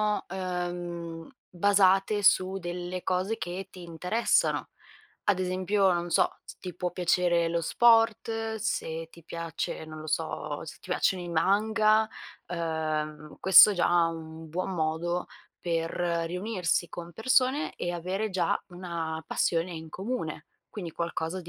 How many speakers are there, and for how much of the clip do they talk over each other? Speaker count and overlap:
1, no overlap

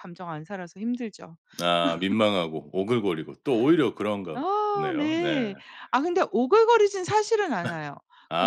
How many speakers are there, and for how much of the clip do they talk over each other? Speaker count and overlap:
2, about 10%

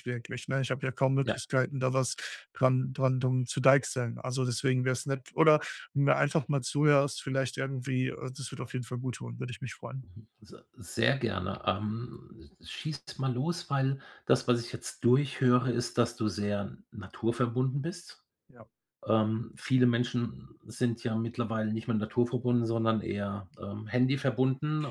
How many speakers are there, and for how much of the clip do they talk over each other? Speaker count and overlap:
2, about 1%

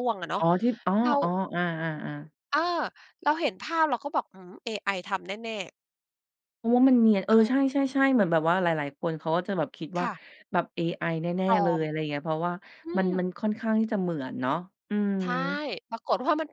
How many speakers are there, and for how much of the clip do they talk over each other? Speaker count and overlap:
2, about 8%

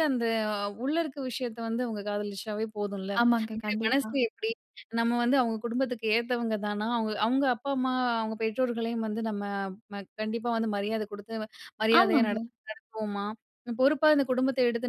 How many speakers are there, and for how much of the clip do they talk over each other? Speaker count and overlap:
2, about 6%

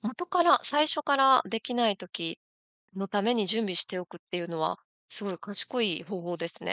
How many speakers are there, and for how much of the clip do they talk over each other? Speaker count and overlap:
1, no overlap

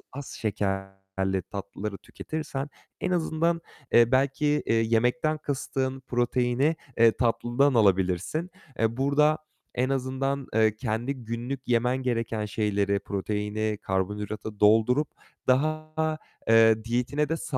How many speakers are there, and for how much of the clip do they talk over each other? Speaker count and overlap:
1, no overlap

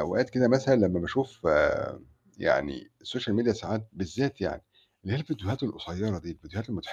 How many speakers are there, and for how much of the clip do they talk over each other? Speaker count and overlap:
1, no overlap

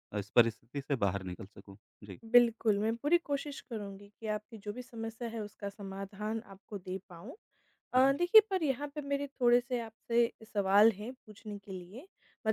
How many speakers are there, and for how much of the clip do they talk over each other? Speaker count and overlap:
2, about 1%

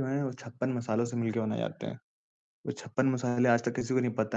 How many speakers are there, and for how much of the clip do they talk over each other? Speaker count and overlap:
1, no overlap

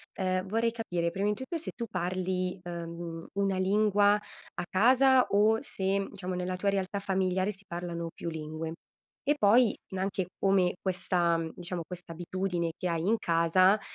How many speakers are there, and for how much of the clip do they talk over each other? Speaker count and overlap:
1, no overlap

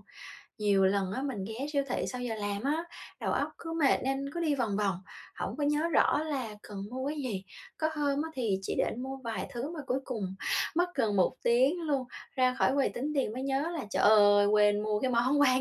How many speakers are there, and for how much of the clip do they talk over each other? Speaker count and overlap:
1, no overlap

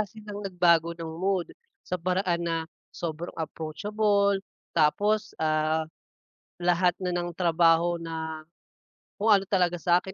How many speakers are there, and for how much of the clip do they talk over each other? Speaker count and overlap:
1, no overlap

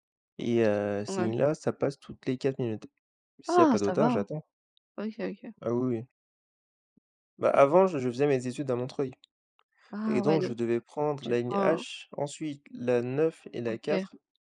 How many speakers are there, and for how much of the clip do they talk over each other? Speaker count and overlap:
2, about 17%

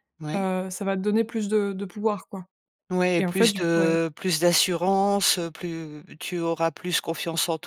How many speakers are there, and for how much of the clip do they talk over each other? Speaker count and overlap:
2, about 12%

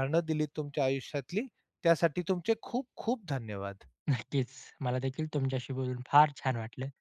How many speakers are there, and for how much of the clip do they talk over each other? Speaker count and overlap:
2, no overlap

